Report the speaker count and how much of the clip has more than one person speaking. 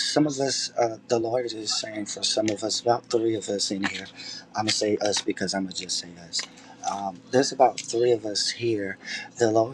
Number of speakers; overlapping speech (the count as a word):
one, no overlap